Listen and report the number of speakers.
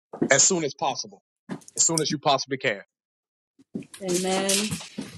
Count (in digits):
2